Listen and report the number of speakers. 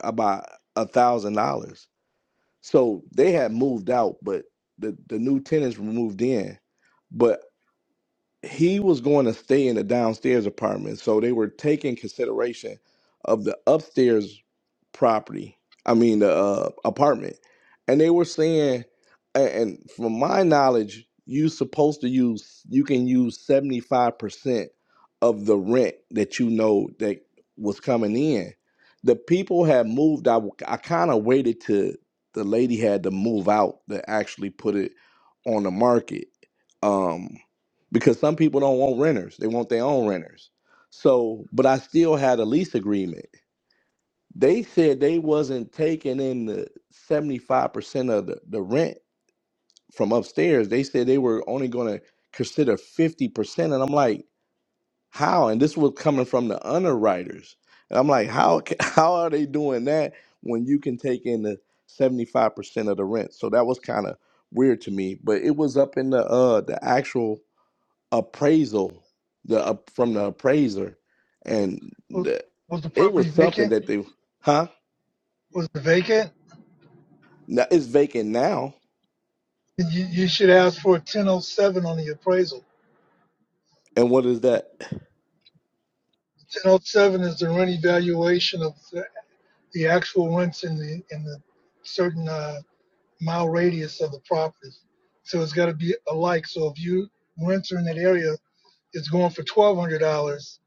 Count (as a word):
two